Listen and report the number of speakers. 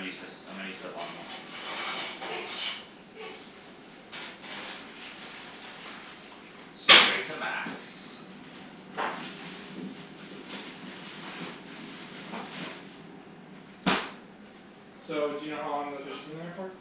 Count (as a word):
two